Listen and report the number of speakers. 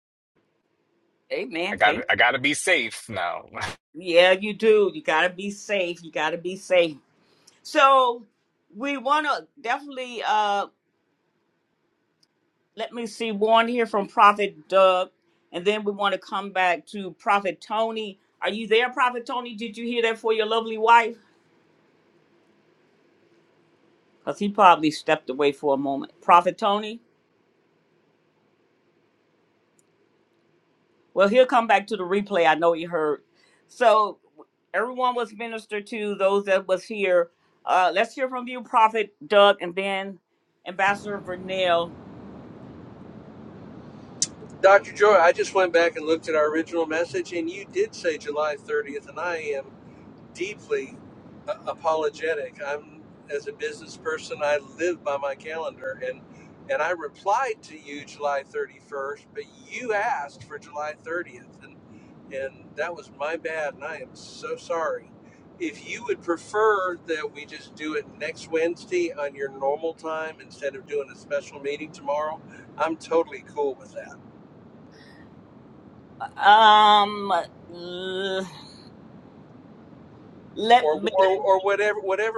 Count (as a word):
three